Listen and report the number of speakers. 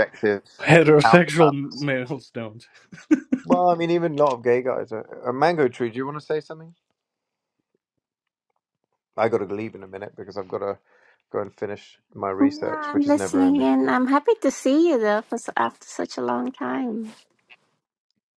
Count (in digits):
3